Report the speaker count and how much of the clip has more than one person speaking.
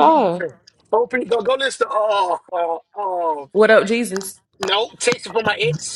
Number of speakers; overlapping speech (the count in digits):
2, no overlap